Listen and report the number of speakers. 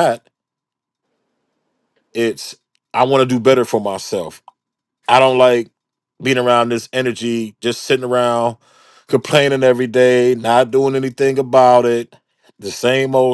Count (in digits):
1